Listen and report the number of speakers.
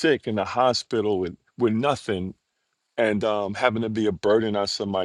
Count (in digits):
1